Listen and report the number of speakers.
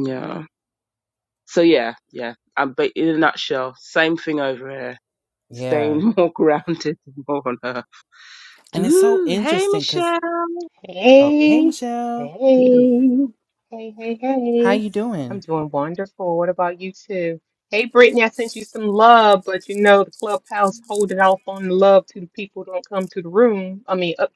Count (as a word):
three